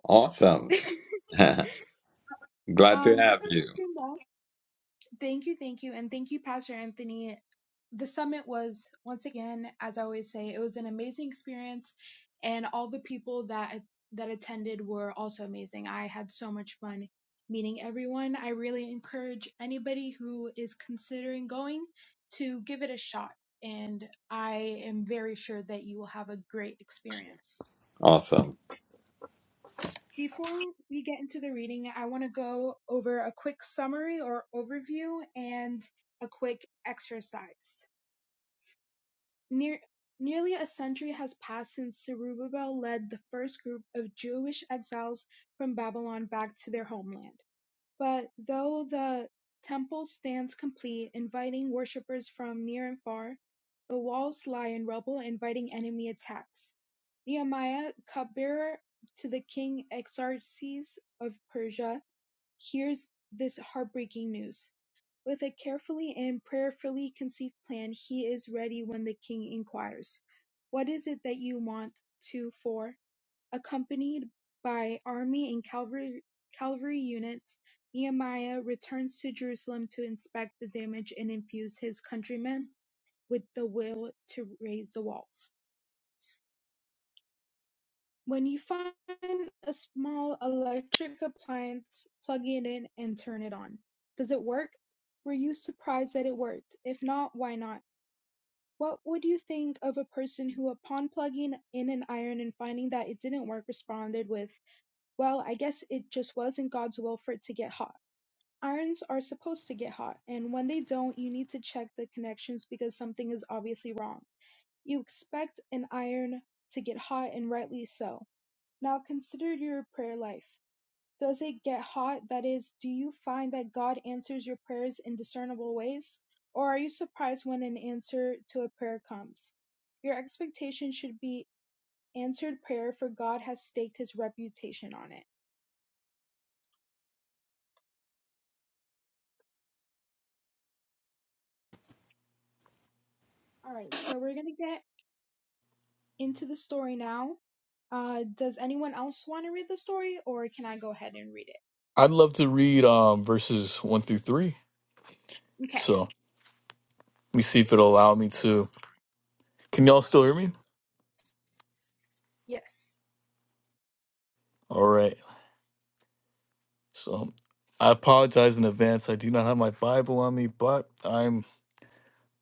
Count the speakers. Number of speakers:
3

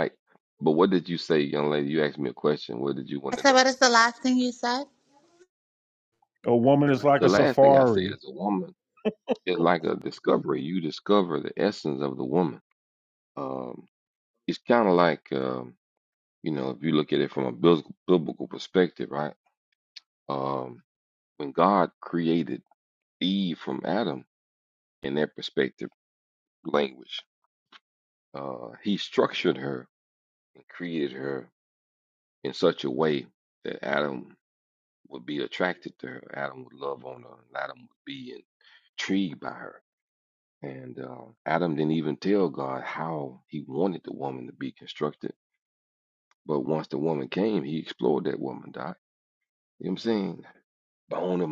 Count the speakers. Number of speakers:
3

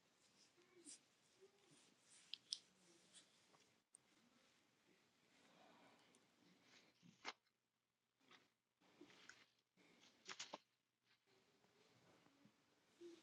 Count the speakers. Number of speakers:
0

